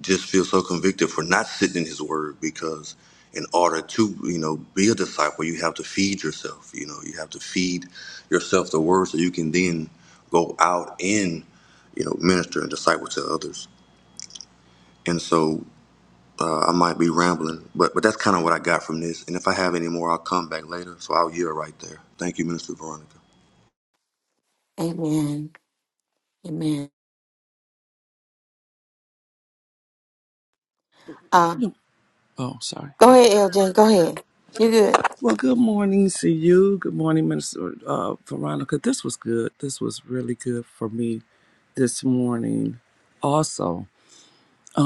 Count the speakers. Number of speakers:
3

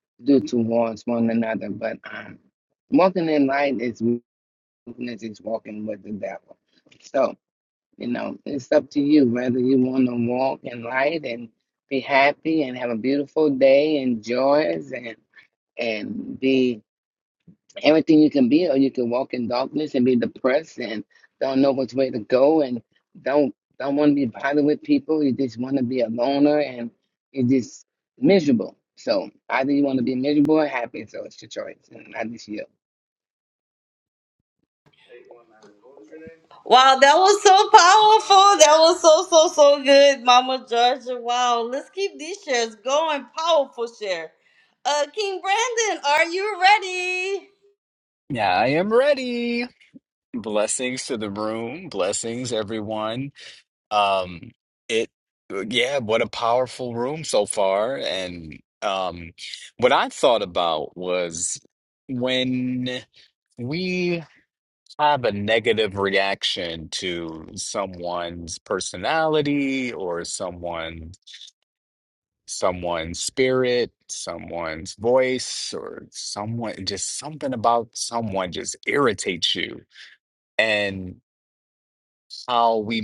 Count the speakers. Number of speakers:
3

